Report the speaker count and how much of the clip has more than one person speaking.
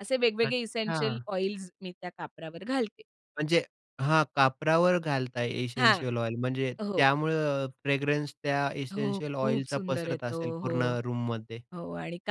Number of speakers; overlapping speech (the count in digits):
2, about 24%